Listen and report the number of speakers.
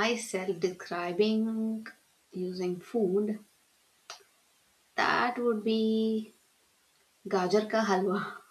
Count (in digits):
1